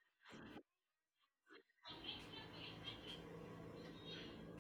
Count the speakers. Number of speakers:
zero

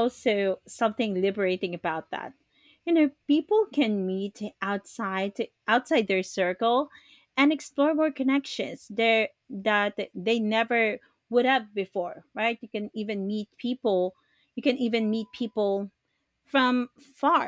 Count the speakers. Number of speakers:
one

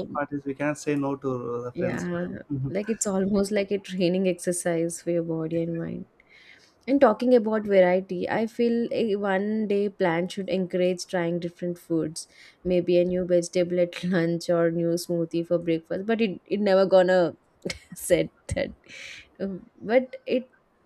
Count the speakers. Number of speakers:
two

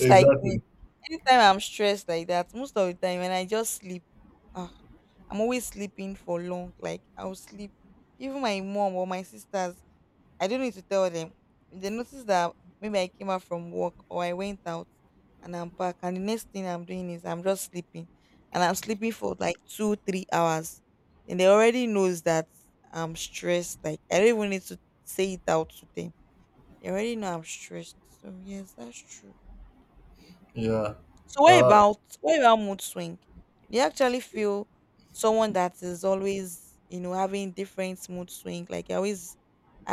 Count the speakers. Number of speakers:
two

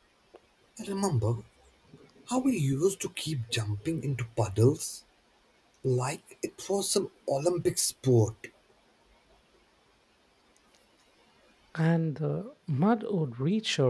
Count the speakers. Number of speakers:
two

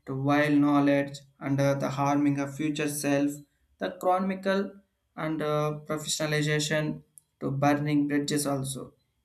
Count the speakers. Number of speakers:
one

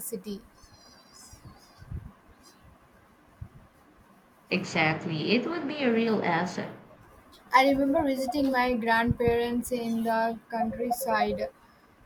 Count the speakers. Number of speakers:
two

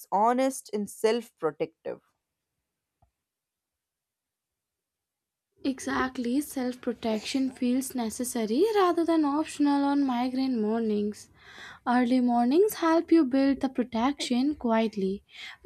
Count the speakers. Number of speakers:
two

